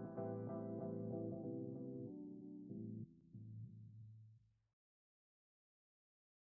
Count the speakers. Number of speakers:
0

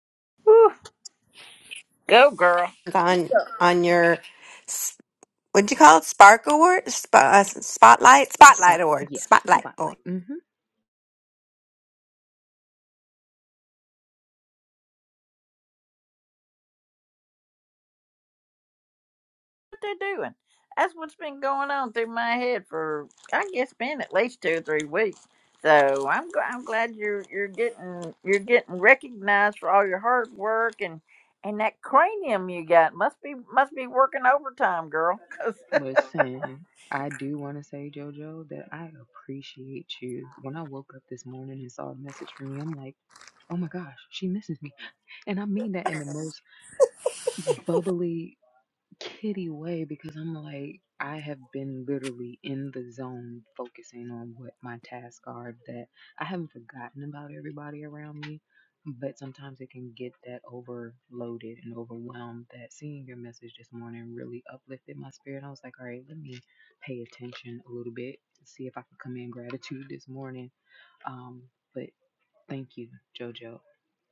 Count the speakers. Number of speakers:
3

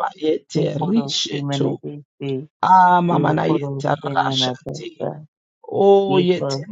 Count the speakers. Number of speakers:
2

